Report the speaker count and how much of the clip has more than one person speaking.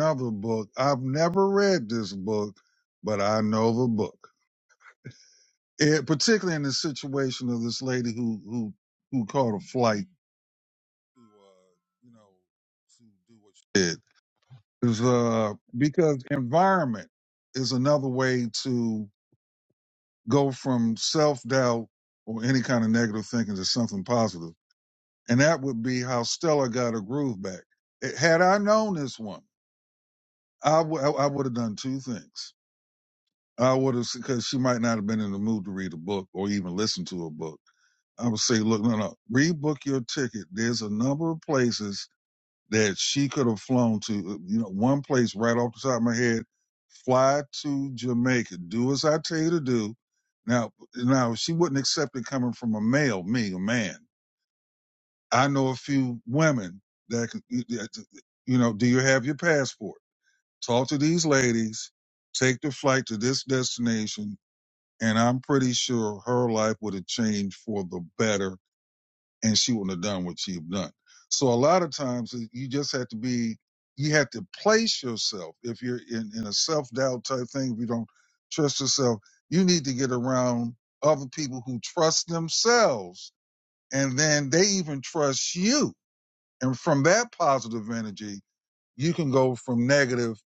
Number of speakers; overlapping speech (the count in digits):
1, no overlap